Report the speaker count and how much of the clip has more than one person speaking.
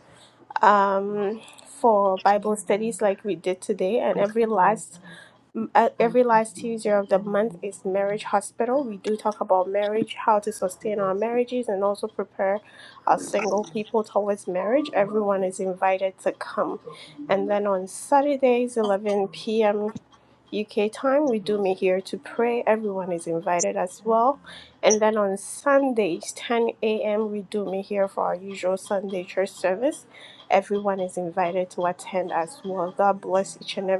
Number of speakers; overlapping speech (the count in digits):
1, no overlap